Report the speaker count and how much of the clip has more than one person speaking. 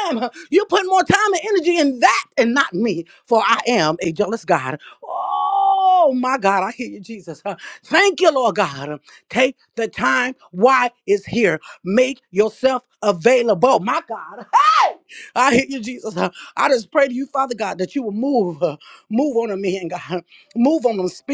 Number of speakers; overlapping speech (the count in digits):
1, no overlap